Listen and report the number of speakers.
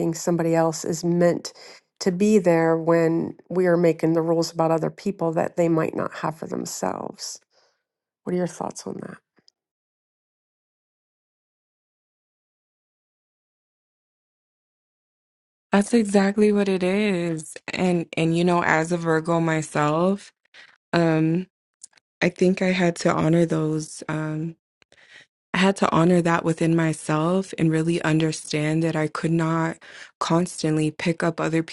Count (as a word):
two